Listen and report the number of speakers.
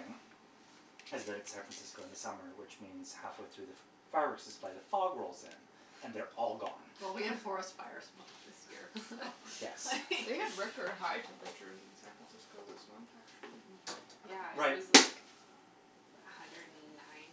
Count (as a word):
four